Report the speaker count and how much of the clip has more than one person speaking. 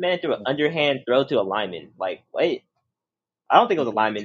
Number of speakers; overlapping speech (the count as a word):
one, no overlap